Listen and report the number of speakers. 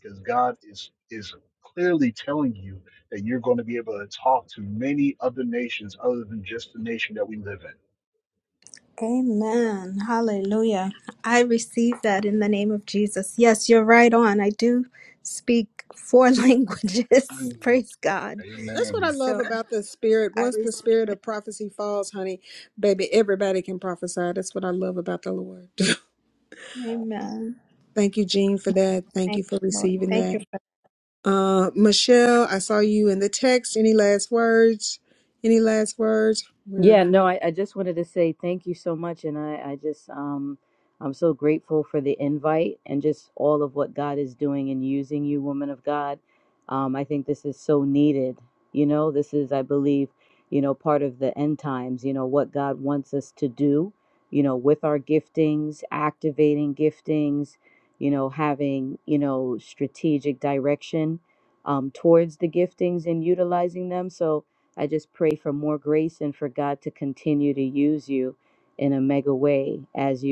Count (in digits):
4